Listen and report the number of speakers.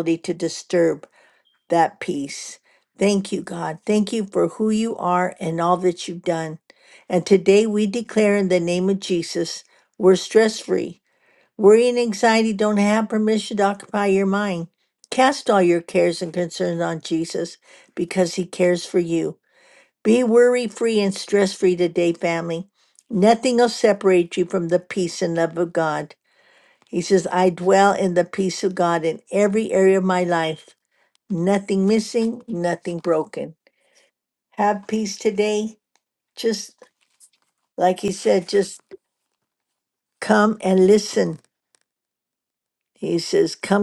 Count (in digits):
1